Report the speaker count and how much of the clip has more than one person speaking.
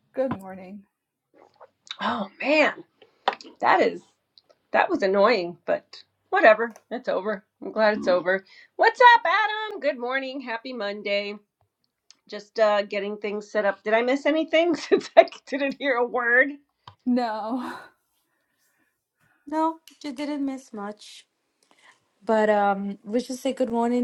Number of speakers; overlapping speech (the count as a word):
three, no overlap